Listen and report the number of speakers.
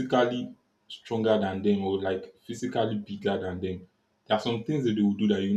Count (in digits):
1